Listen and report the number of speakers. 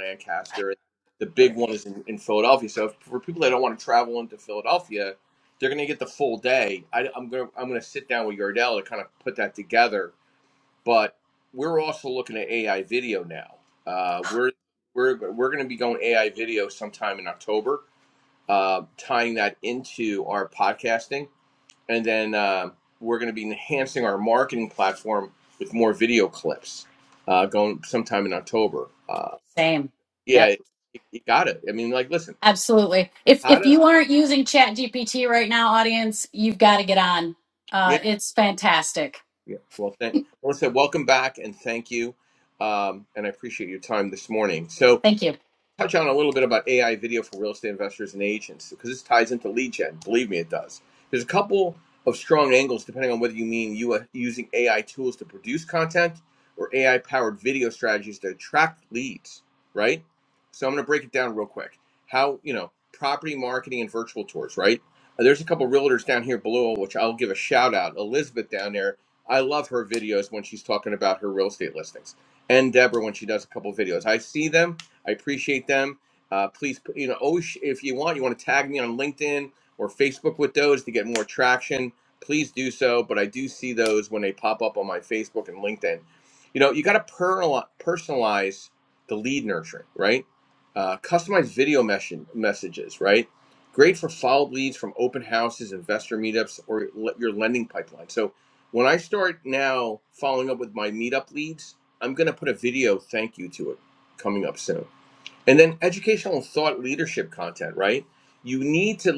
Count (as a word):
two